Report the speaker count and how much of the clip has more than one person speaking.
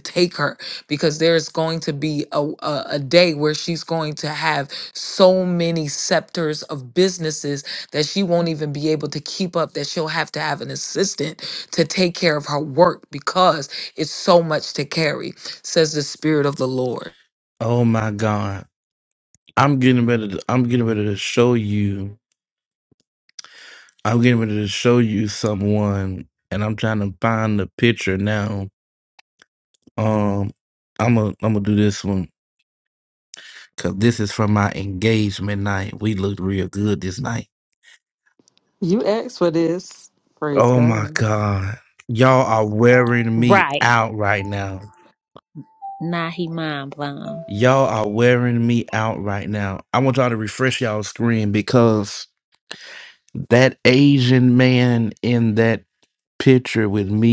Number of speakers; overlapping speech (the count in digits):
4, about 2%